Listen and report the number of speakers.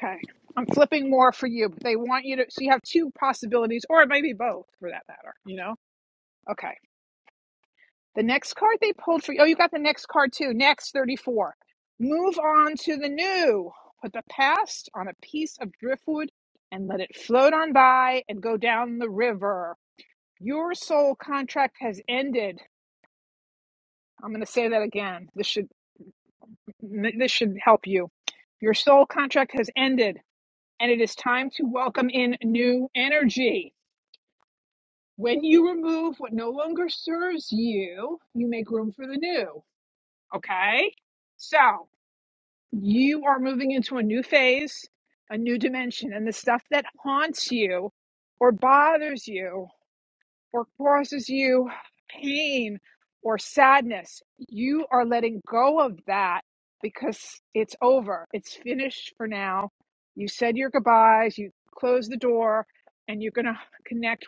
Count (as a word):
one